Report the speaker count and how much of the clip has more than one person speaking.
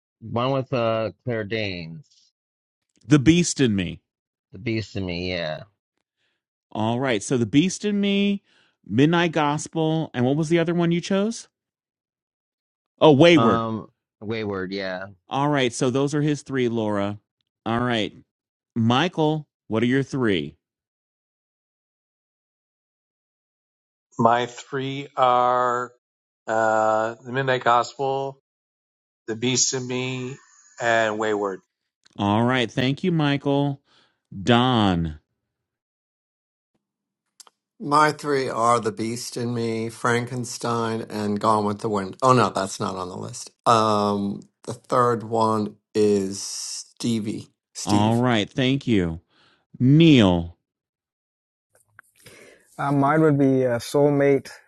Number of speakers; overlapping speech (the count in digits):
5, about 1%